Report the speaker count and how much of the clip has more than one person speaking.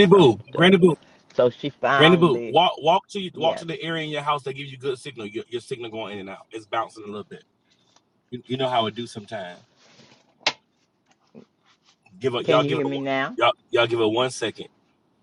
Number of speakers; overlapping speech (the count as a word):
two, about 14%